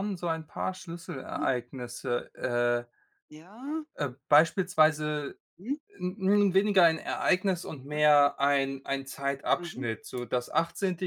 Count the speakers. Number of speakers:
two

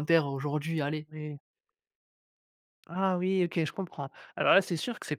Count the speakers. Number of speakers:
two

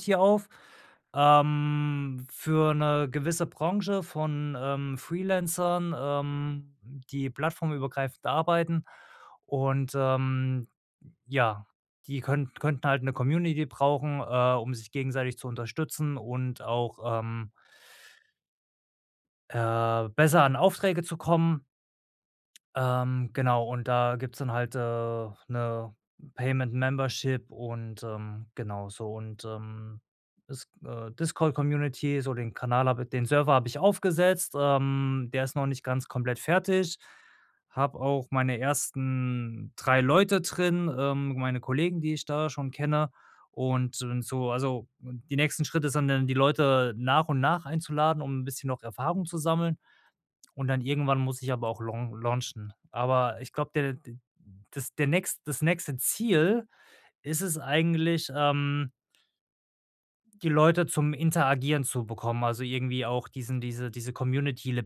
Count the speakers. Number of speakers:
one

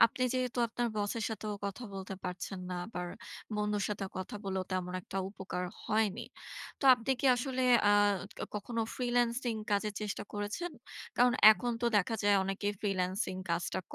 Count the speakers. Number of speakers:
one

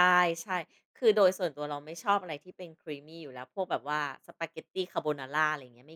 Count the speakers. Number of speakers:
one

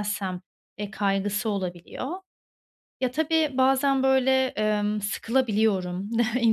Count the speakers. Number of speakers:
one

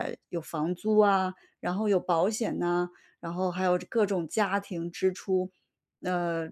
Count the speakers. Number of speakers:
one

